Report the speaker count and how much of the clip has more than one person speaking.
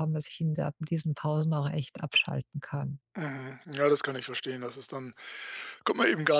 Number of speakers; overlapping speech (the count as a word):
two, no overlap